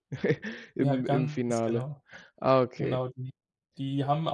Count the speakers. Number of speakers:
2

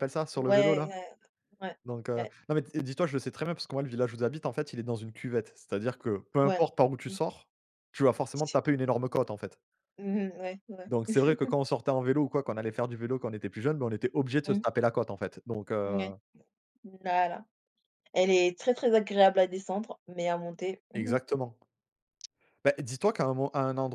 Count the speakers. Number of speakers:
2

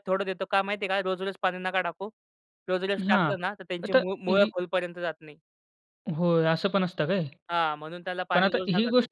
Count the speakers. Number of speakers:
2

